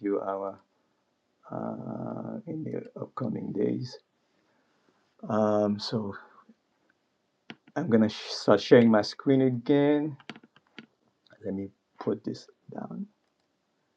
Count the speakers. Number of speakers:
1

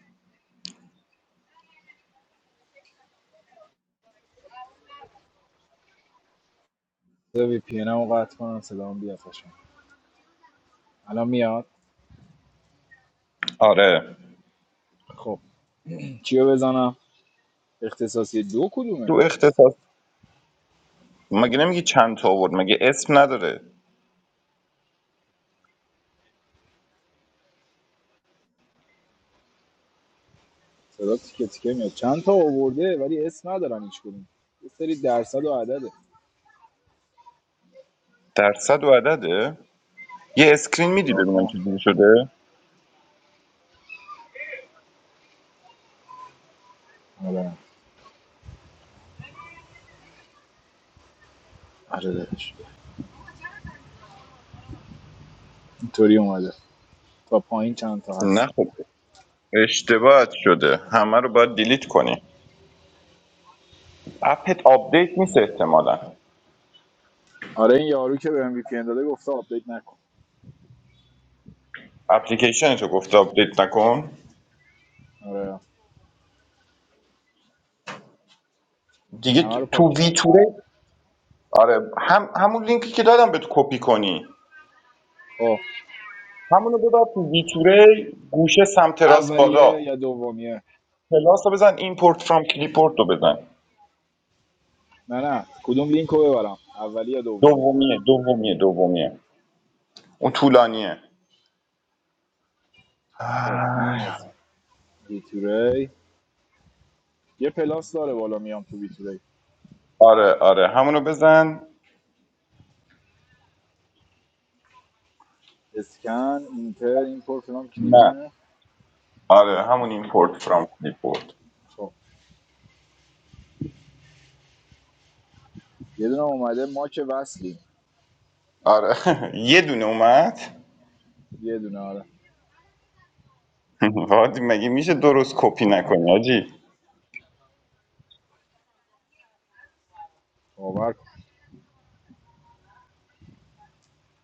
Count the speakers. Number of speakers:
2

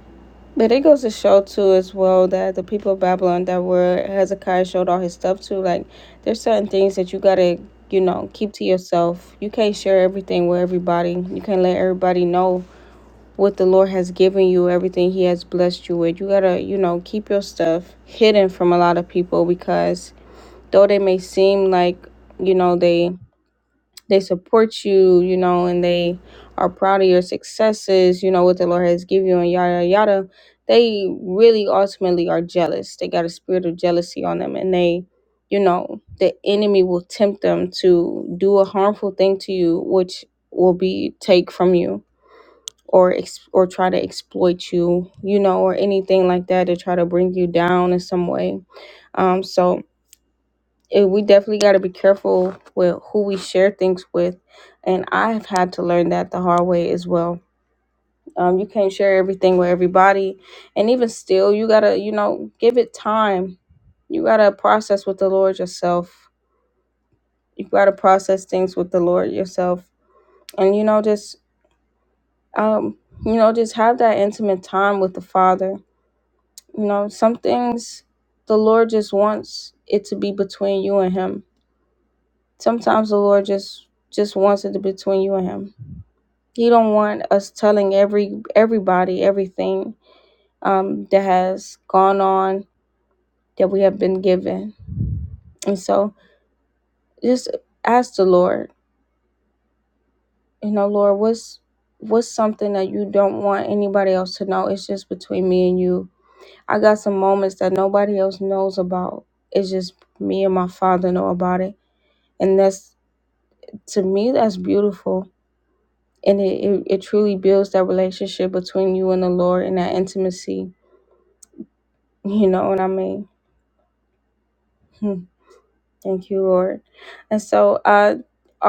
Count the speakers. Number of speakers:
1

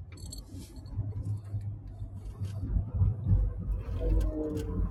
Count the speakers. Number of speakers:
0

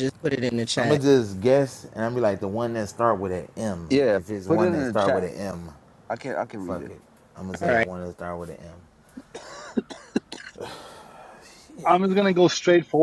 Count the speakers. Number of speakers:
4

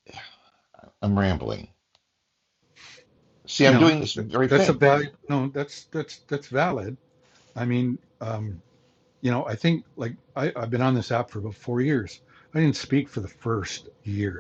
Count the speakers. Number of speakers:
2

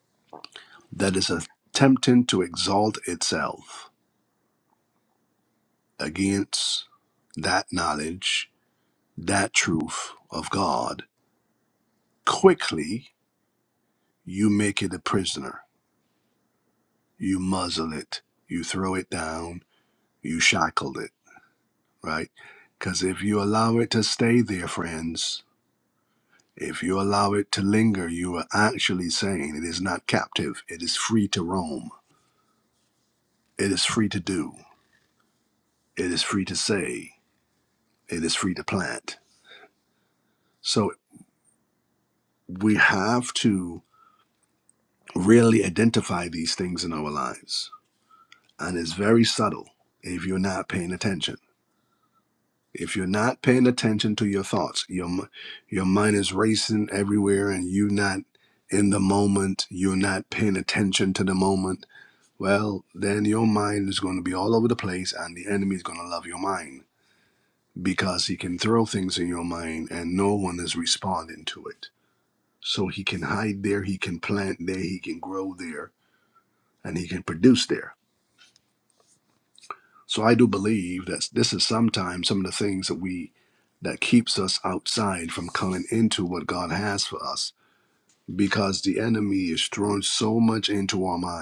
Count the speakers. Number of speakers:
1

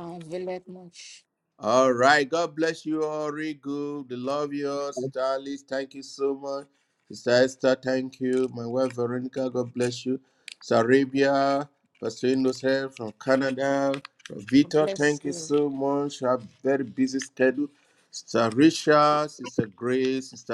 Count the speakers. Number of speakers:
2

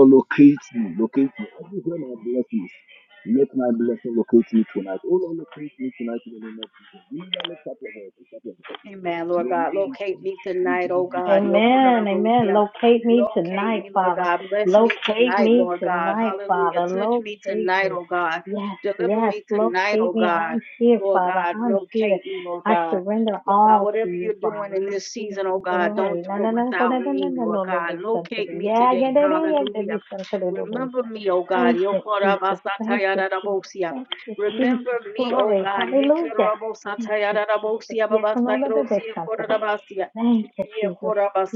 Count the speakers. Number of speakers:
3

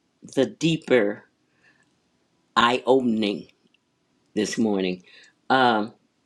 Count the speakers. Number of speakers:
1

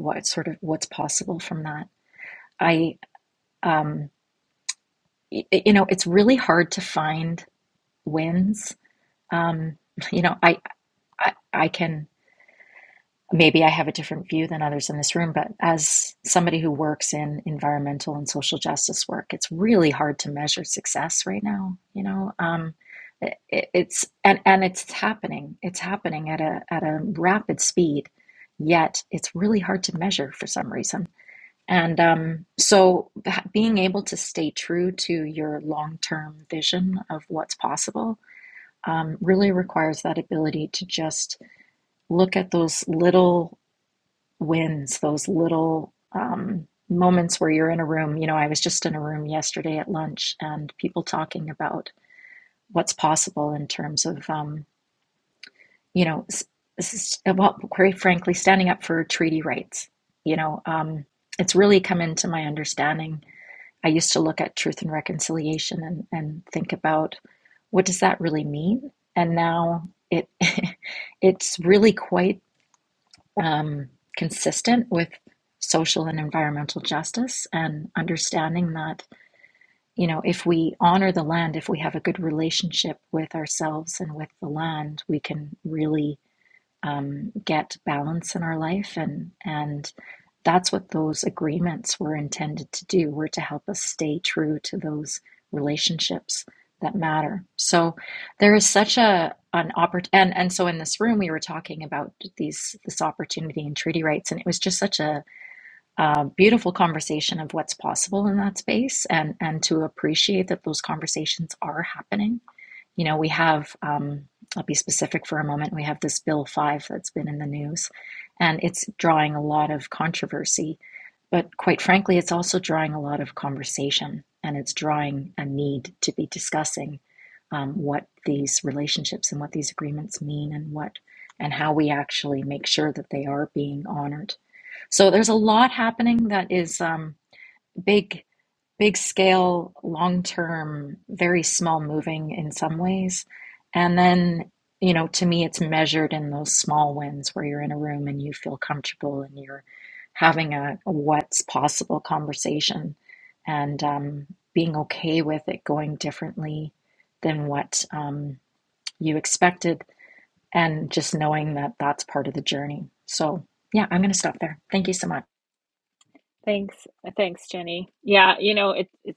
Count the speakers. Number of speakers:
2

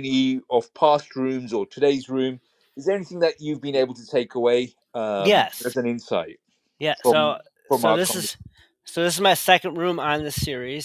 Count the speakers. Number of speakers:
2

